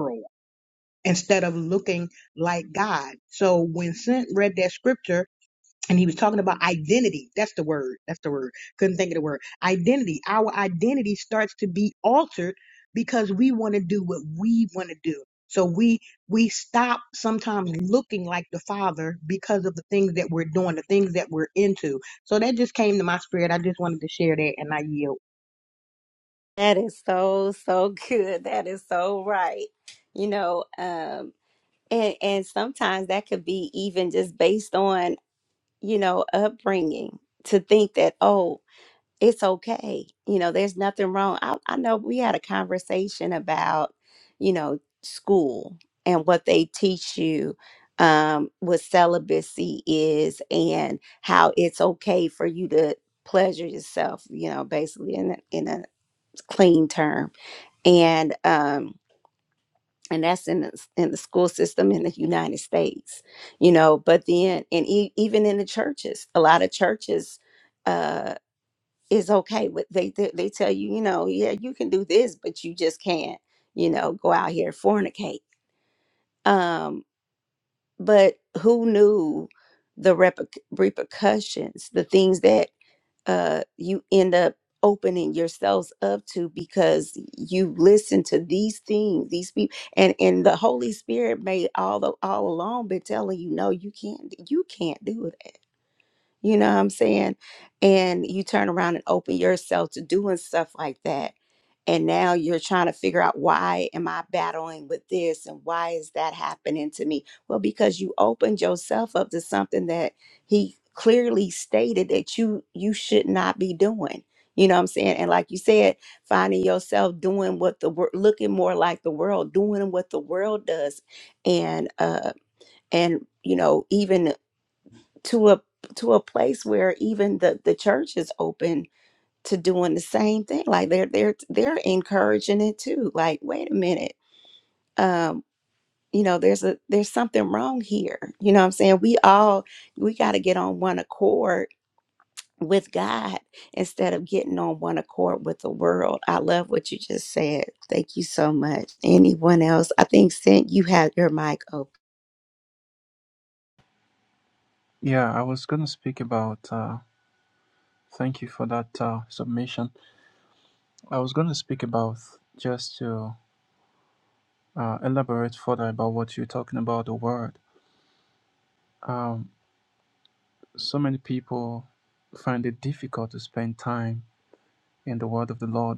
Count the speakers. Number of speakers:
three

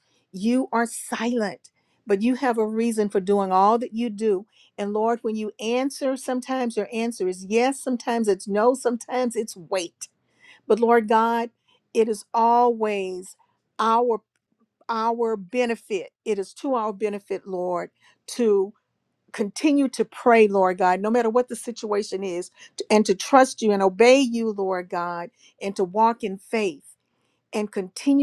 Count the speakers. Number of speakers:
one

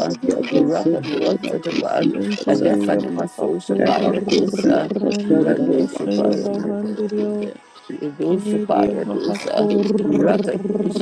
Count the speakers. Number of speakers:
three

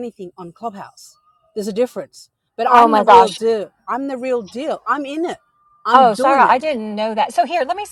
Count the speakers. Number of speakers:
two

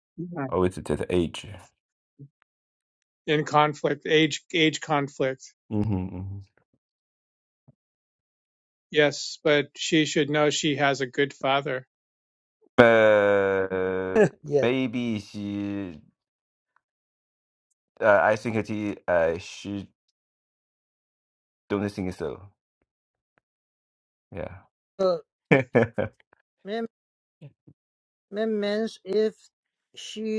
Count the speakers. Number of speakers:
three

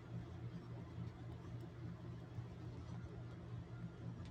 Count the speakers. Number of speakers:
zero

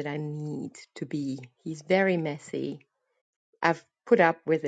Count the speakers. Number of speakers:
one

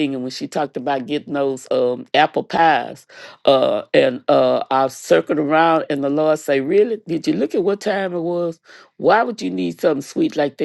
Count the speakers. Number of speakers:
one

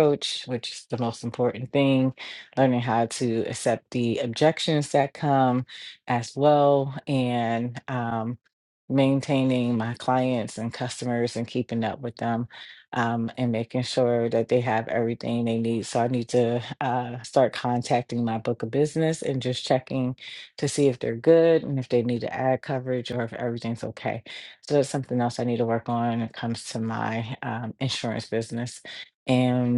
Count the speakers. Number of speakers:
one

